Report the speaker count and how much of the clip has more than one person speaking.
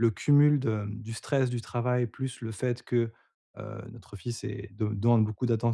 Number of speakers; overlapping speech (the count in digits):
1, no overlap